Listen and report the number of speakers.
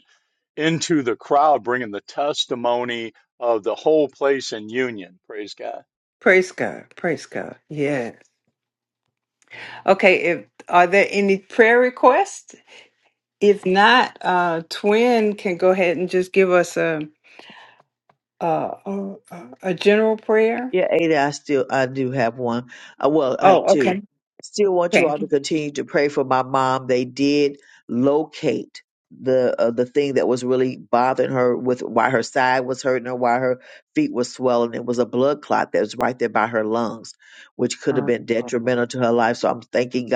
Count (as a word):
three